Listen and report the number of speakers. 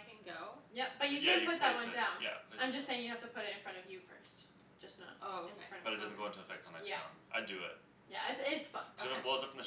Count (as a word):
three